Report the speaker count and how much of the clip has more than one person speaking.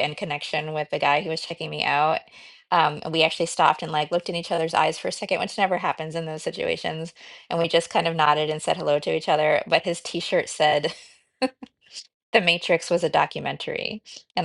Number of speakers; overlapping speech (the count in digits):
1, no overlap